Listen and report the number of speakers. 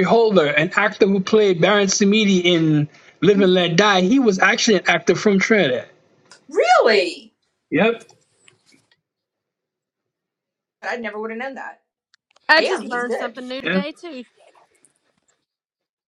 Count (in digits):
3